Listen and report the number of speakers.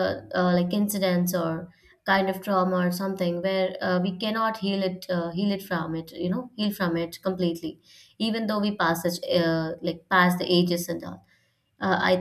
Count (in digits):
1